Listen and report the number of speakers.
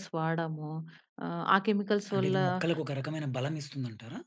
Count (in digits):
2